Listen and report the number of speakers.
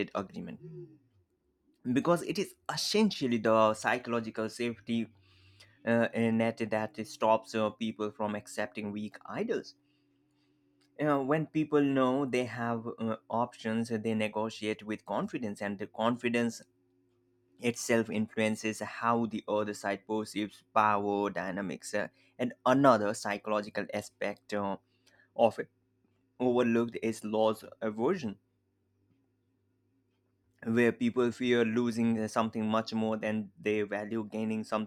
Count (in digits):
1